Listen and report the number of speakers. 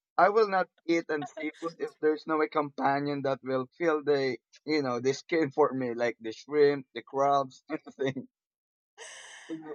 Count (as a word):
one